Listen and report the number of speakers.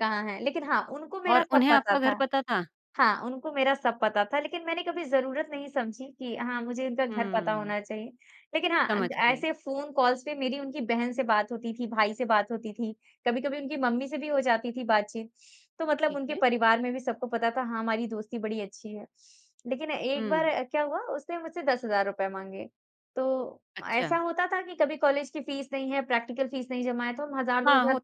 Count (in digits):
2